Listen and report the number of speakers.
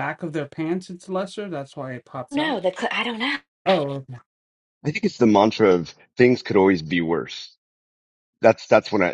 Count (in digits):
3